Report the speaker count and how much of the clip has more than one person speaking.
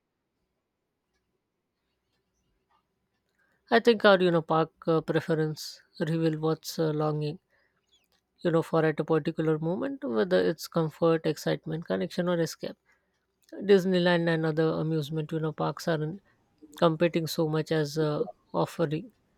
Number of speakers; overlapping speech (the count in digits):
1, no overlap